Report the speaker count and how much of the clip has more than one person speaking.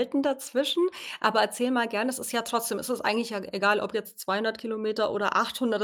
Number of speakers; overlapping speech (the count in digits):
1, no overlap